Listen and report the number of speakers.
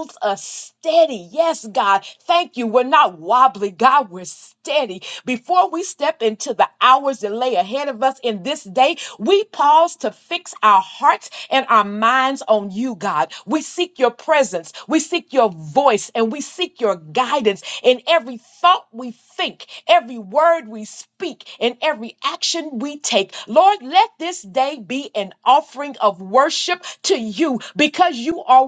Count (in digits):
1